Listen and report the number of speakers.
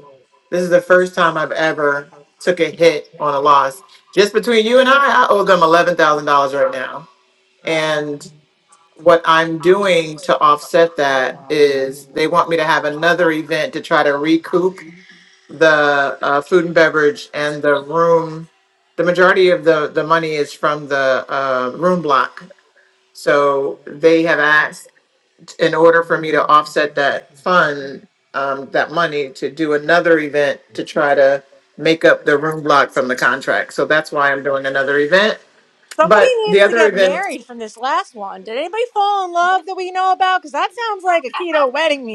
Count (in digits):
2